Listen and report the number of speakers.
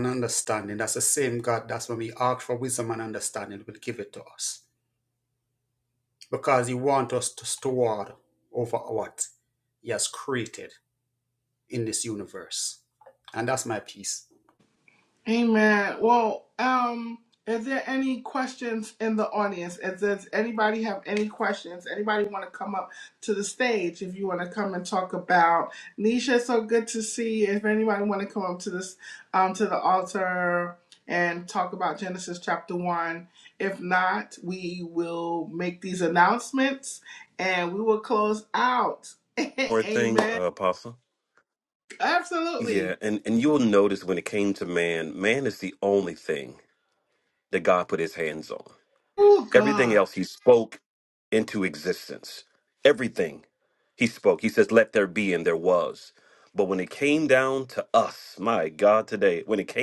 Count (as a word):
three